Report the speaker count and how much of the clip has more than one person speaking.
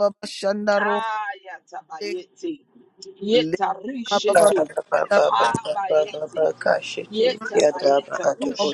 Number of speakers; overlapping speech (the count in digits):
3, about 38%